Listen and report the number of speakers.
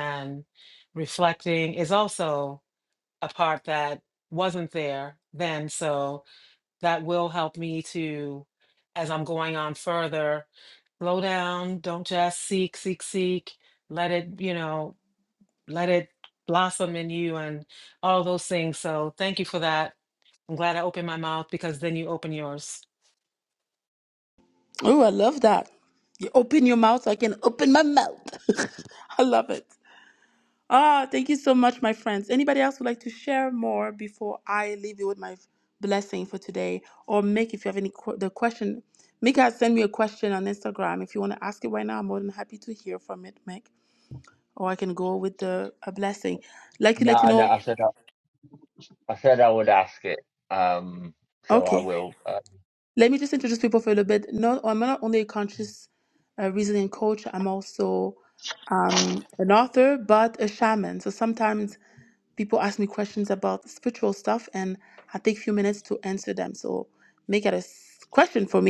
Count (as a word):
three